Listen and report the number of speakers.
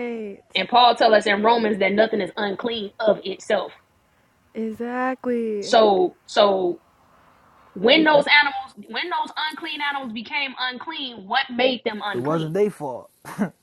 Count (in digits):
3